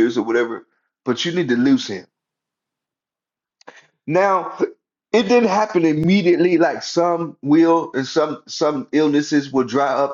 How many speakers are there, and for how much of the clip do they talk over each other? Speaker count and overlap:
1, no overlap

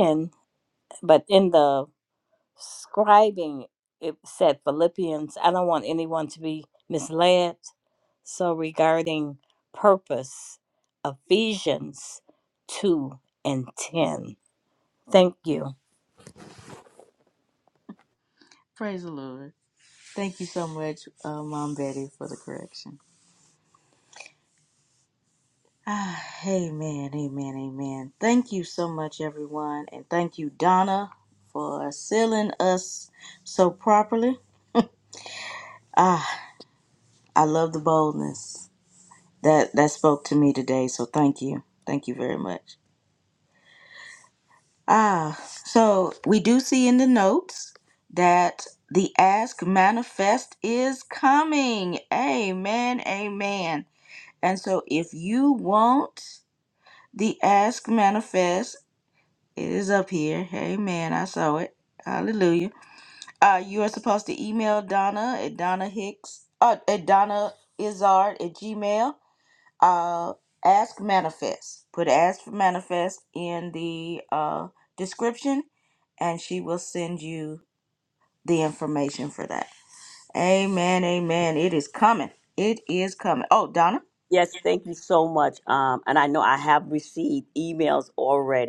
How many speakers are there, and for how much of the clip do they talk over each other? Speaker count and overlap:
3, no overlap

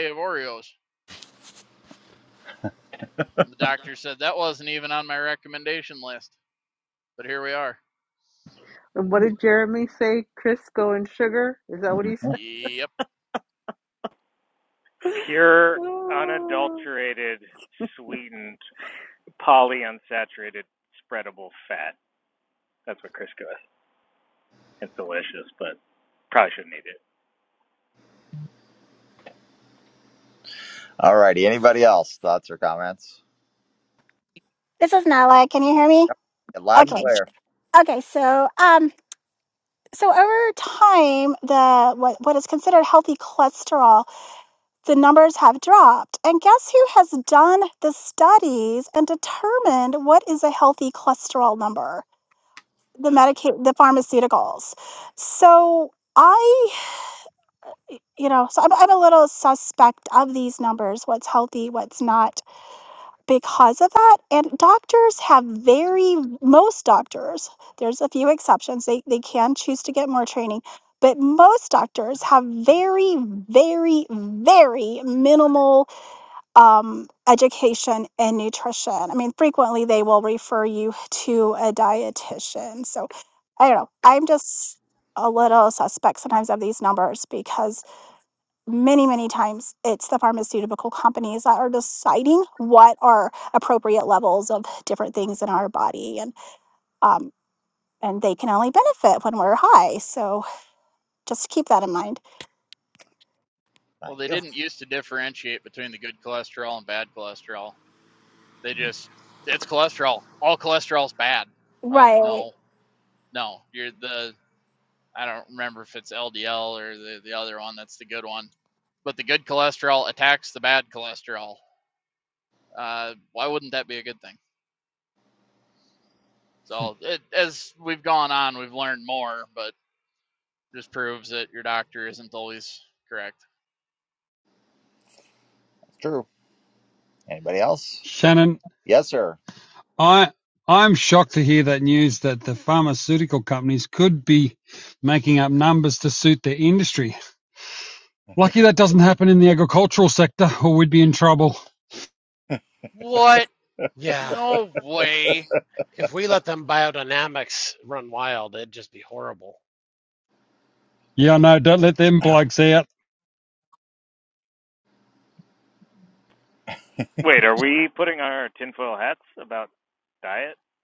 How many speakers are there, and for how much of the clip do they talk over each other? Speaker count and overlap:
7, about 1%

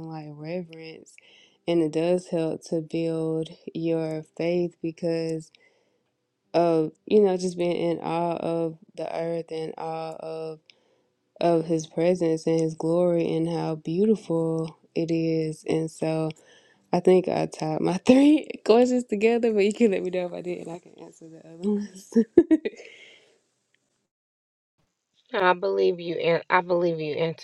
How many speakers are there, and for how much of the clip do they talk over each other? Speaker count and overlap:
2, no overlap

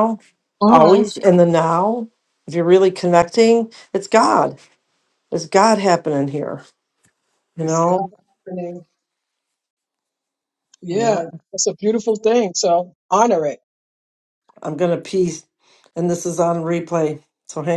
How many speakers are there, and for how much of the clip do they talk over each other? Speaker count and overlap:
2, about 5%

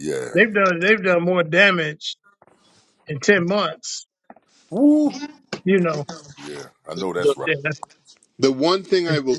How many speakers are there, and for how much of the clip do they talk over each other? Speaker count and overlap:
3, about 1%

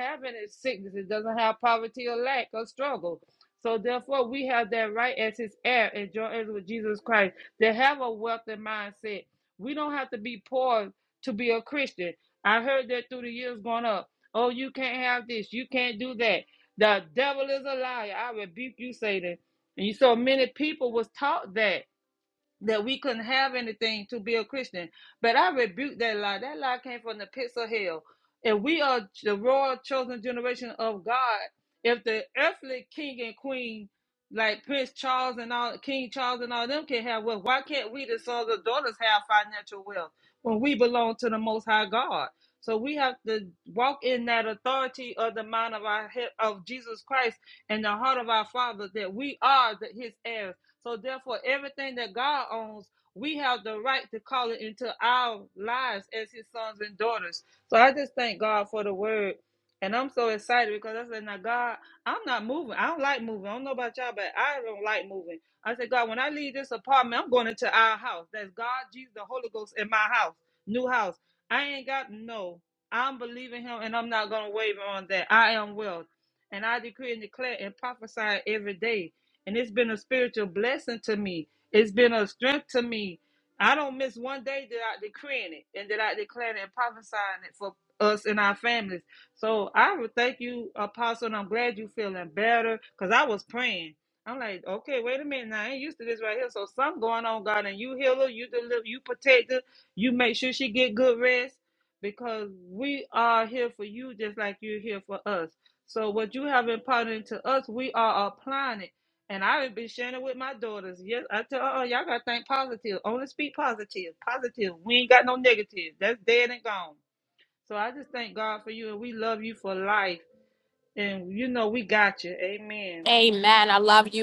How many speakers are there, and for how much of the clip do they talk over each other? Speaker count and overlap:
2, under 1%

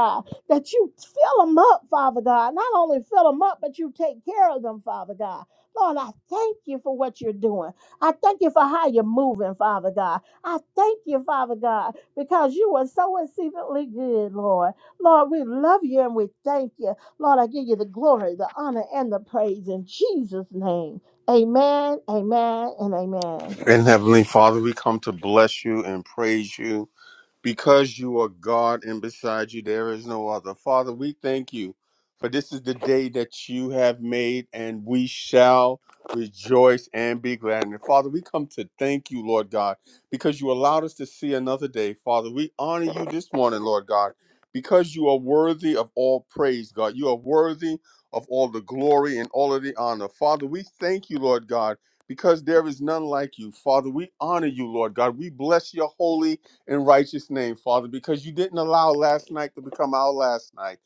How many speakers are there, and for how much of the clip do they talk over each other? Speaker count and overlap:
2, no overlap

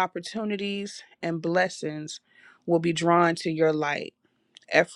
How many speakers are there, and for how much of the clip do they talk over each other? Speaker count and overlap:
1, no overlap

